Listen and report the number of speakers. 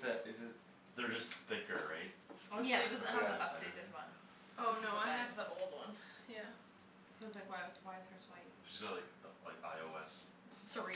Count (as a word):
four